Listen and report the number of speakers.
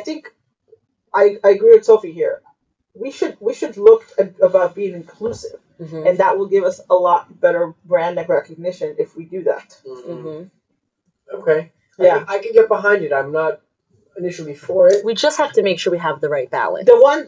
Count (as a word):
three